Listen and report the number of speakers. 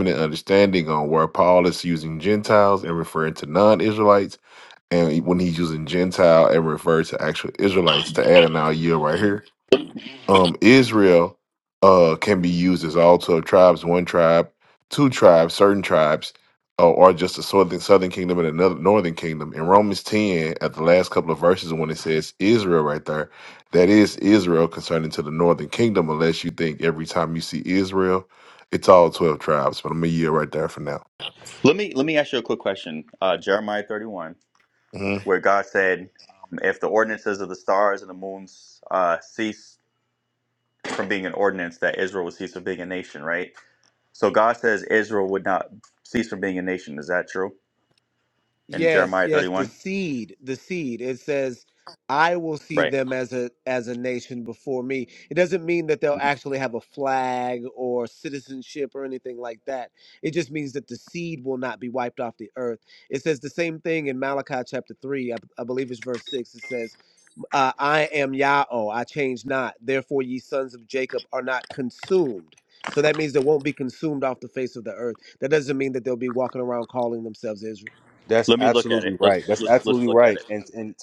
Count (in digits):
4